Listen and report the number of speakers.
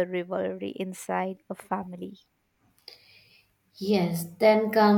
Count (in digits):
2